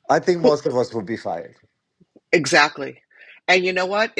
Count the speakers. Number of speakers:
two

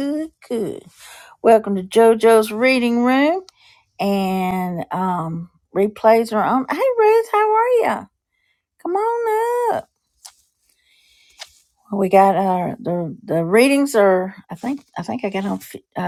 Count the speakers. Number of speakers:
one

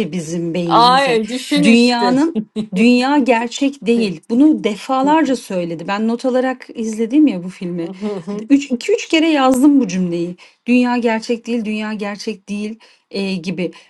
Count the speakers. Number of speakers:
two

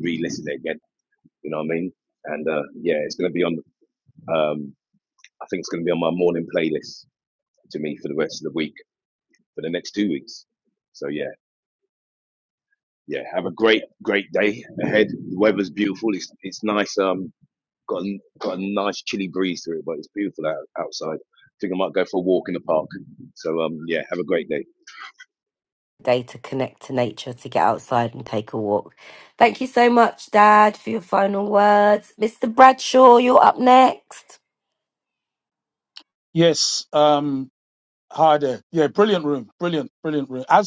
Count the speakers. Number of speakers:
three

